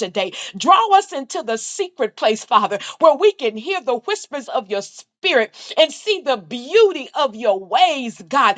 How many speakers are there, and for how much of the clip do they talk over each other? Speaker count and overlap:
1, no overlap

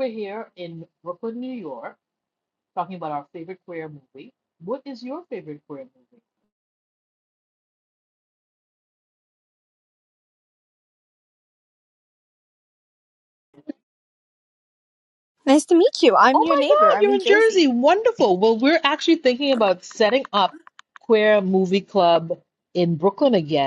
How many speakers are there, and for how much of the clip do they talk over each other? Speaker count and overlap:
2, about 5%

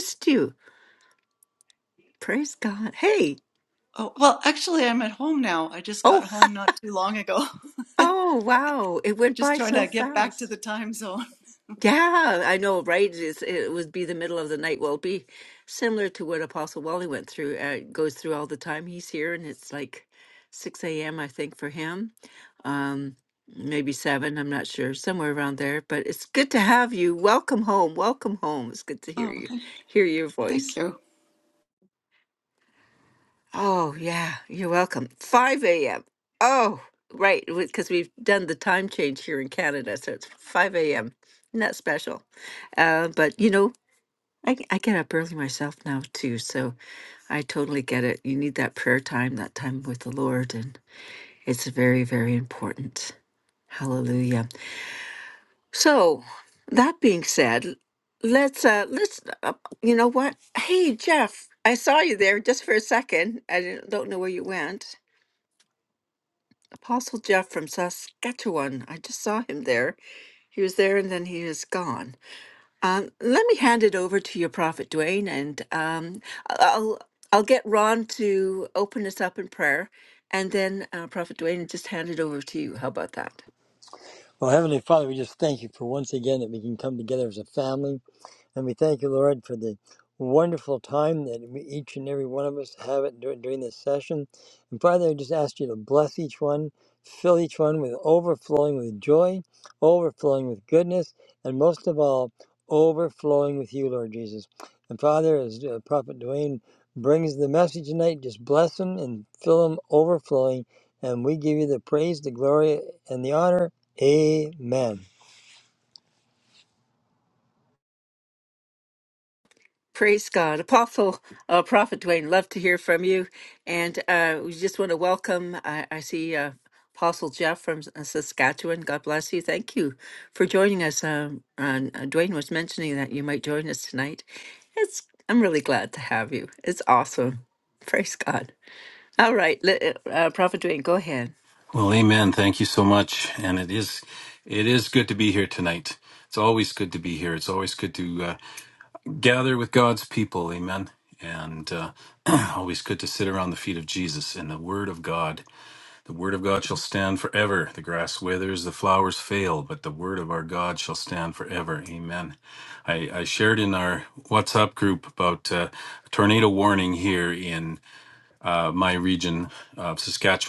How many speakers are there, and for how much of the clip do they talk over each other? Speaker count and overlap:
4, about 1%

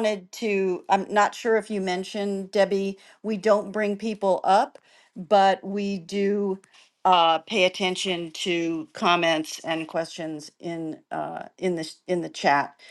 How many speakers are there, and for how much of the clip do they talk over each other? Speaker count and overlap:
1, no overlap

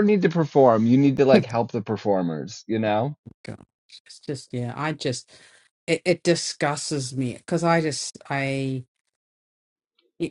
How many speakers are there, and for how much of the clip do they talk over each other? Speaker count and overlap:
2, no overlap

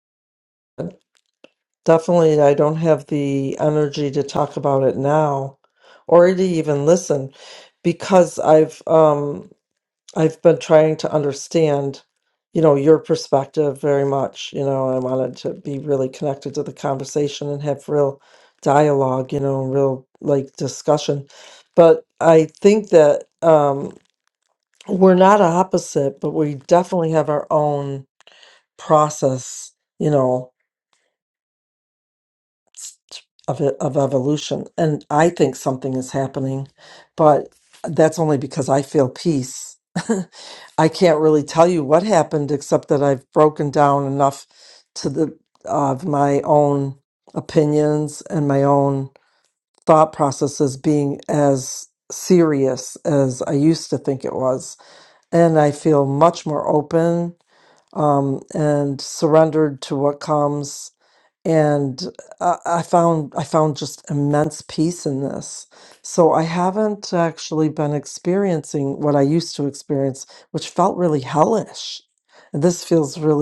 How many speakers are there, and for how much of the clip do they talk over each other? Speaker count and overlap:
1, no overlap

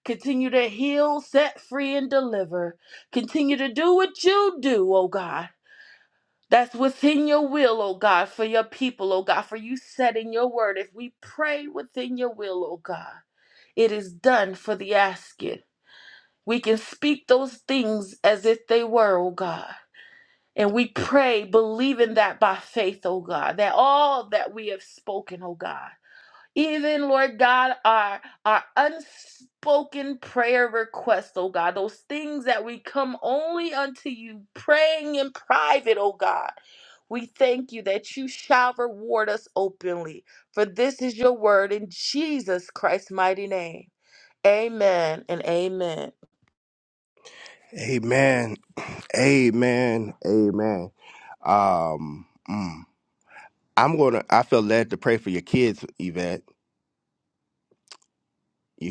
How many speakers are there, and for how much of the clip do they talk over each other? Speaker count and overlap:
2, no overlap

